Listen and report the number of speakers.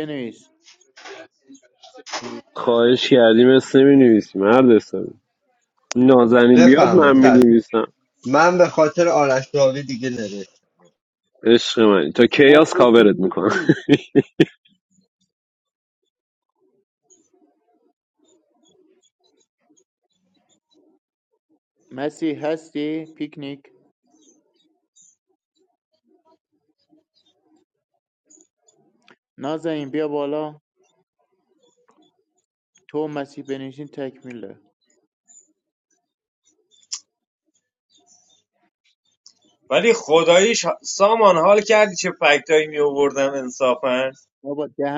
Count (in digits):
4